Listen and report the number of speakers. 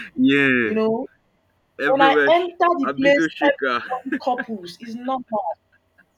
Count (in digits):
2